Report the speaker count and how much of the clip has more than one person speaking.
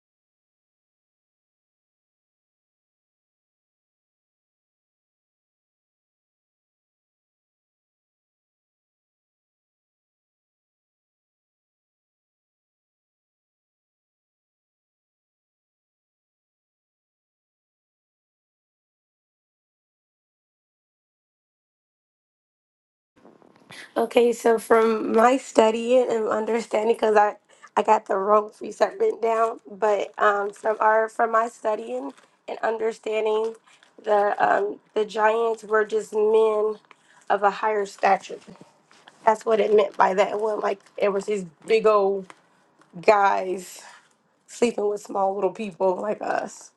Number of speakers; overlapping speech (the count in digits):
1, no overlap